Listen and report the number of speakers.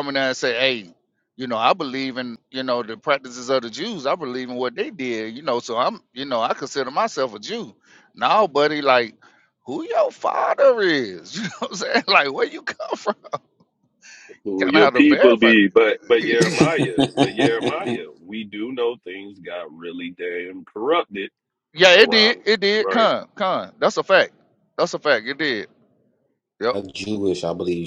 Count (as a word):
three